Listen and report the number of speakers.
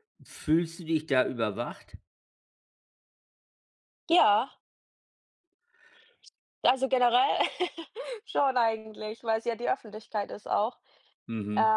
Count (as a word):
two